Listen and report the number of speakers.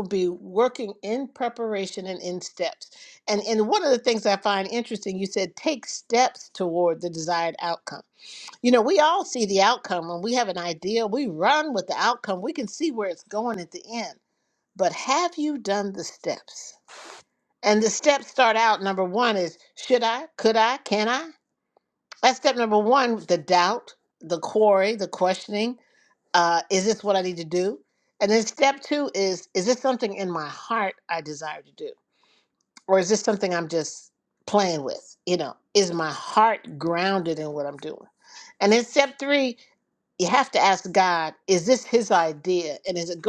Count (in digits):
1